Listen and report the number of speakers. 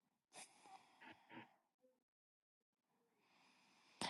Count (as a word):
zero